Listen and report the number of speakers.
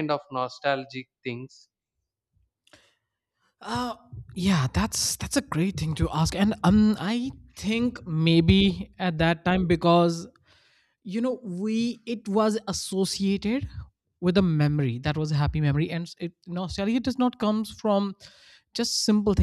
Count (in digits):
2